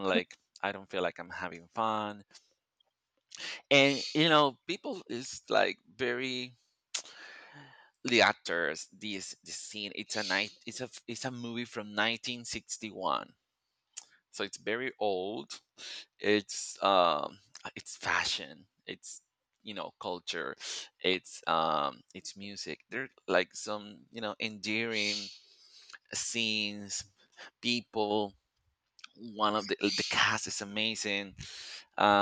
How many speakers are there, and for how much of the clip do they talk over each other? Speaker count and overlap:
one, no overlap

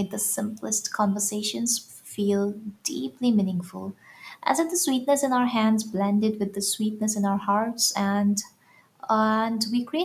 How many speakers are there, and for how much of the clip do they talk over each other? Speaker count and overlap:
one, no overlap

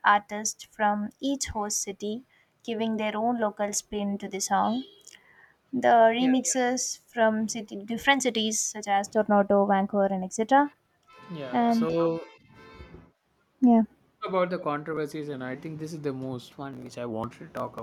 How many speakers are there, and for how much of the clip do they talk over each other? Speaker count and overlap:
two, about 3%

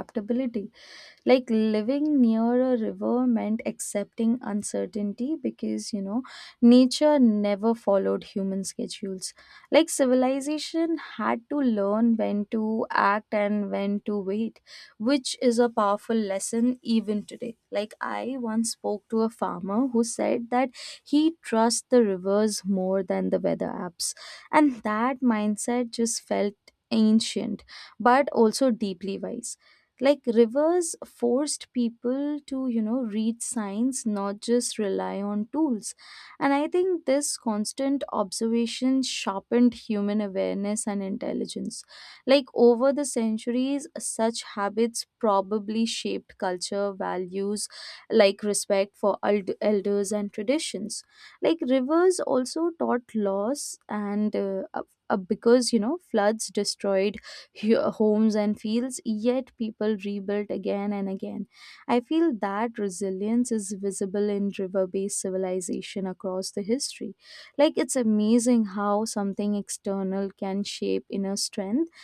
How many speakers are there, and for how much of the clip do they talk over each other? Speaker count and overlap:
one, no overlap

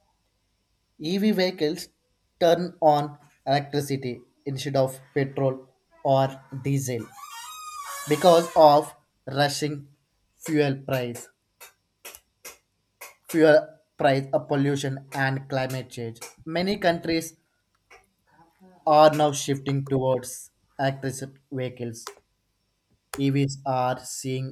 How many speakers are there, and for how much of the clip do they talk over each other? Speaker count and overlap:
one, no overlap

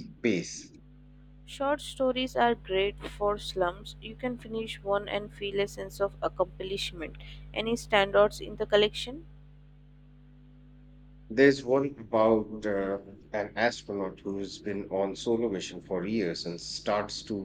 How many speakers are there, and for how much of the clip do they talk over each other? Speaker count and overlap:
two, no overlap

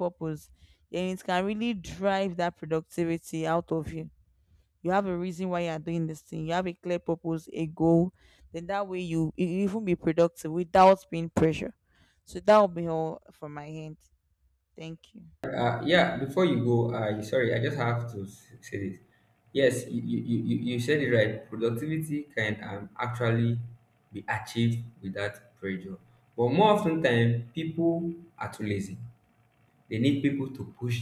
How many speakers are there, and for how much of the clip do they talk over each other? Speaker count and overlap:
two, no overlap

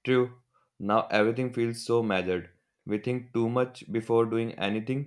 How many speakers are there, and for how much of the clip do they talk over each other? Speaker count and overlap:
one, no overlap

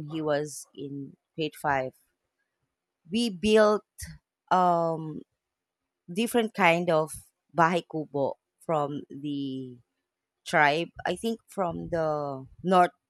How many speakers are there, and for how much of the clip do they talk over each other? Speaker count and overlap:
one, no overlap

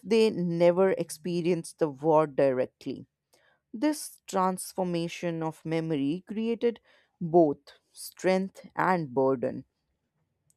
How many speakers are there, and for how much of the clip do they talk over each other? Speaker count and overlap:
one, no overlap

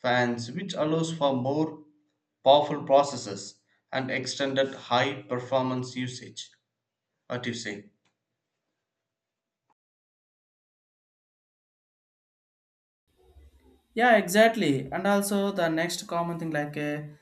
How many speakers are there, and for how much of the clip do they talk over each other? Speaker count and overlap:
two, no overlap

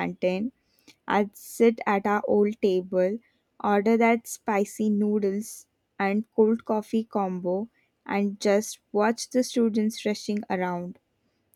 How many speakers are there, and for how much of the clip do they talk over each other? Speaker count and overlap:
one, no overlap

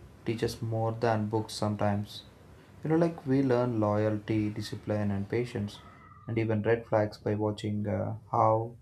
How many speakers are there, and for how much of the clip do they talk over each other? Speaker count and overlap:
one, no overlap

